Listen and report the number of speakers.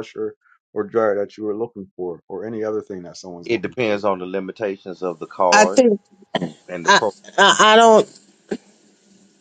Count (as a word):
three